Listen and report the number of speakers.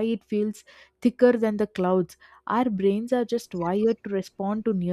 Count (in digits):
1